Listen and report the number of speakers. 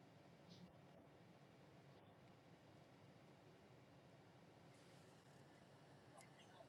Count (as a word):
zero